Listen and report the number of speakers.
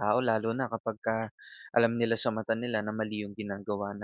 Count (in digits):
1